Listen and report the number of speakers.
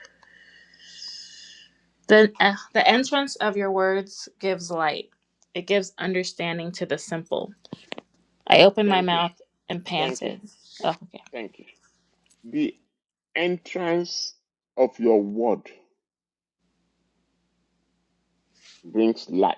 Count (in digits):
2